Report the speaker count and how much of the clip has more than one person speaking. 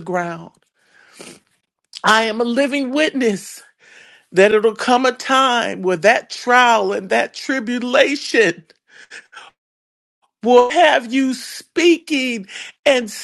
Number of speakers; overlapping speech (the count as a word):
one, no overlap